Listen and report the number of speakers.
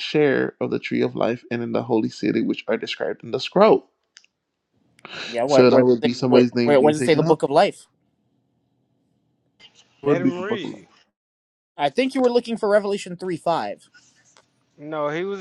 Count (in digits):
3